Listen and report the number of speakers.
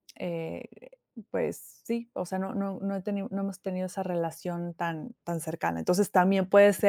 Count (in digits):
1